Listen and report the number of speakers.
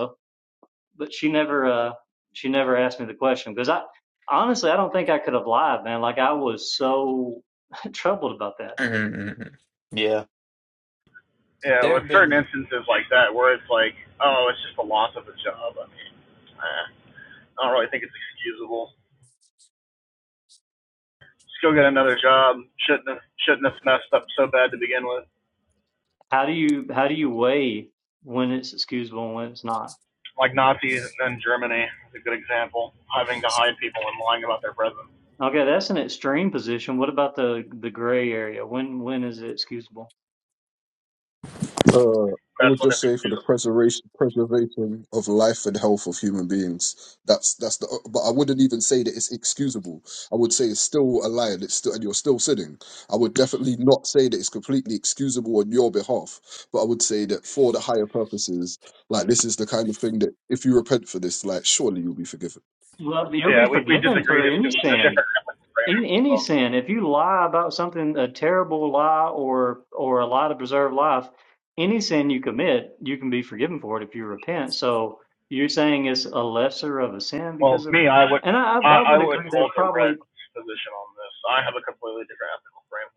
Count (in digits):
4